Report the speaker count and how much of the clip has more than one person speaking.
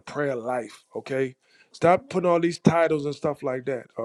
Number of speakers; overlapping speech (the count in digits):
1, no overlap